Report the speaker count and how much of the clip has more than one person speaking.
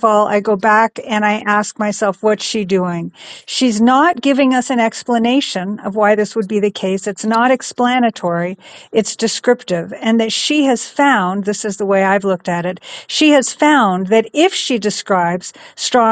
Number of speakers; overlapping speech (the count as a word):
one, no overlap